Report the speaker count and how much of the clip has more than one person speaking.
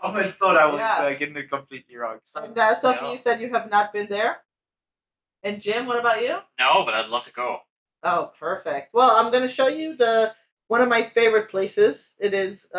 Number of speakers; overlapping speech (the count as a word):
three, about 10%